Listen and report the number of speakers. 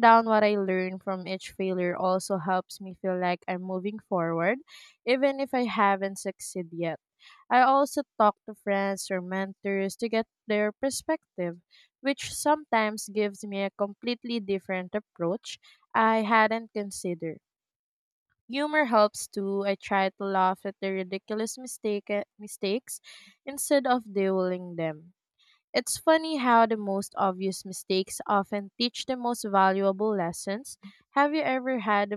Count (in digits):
1